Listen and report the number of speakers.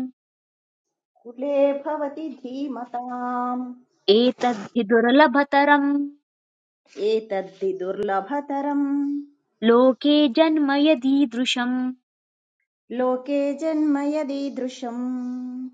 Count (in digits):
2